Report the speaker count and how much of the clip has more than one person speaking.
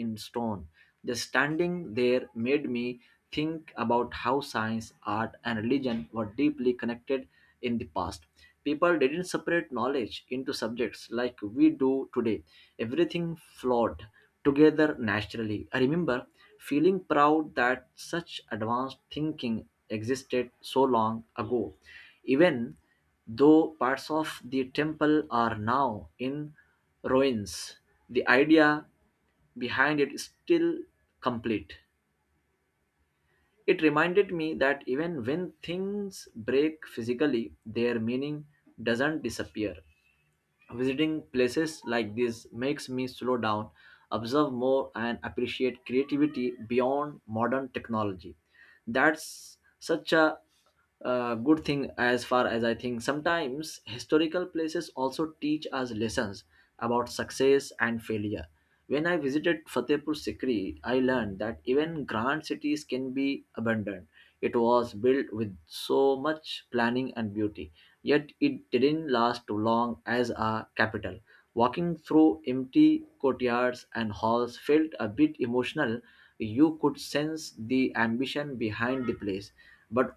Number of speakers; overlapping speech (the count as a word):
one, no overlap